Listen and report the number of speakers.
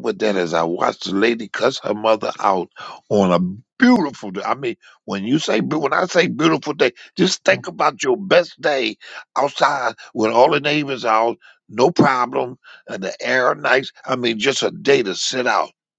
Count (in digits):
1